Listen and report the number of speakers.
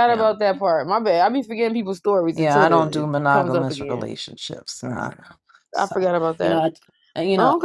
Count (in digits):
2